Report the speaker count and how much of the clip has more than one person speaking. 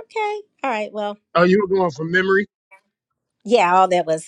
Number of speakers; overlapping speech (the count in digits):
2, no overlap